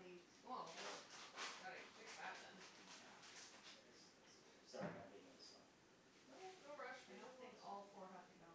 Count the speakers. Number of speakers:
3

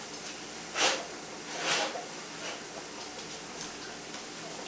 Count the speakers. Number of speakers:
0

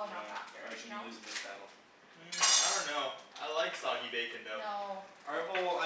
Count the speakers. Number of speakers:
3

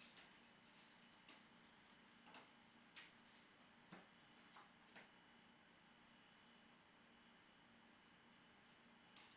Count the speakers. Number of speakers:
0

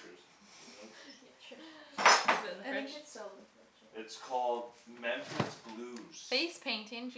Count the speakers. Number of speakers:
3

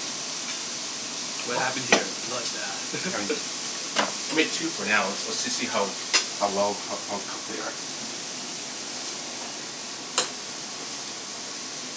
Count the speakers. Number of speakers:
2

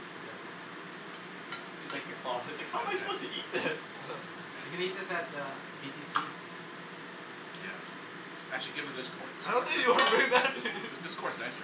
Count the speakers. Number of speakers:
4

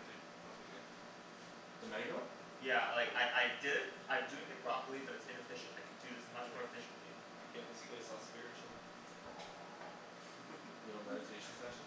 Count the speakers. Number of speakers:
3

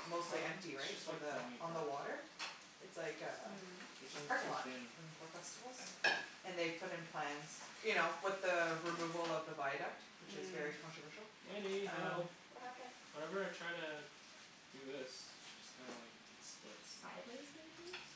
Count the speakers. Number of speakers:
3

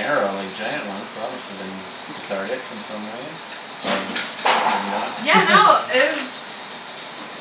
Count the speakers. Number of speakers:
2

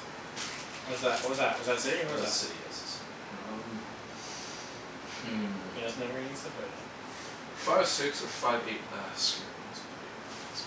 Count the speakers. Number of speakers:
2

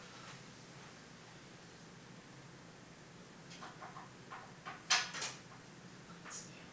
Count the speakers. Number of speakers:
0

